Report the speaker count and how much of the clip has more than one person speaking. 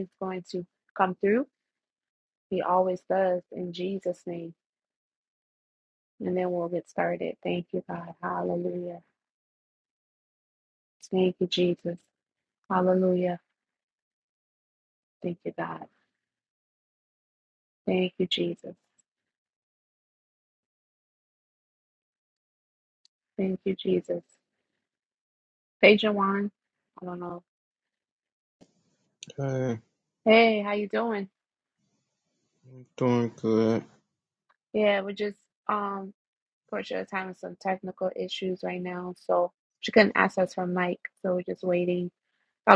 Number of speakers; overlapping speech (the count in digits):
2, no overlap